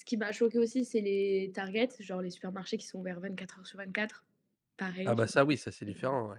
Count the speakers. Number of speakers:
two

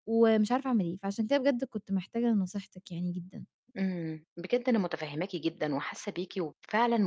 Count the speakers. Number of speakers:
two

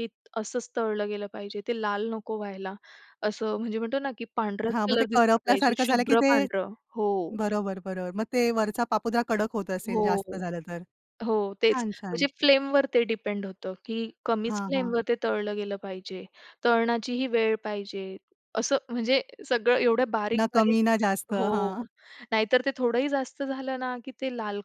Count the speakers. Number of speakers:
two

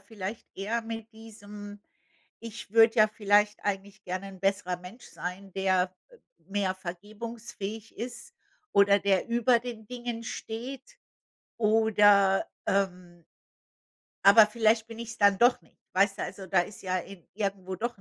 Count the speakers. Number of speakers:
one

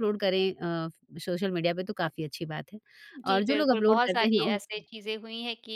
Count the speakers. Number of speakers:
two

